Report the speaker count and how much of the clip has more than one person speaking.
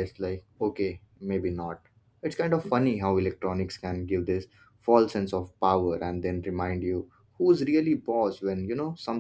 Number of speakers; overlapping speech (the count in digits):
1, no overlap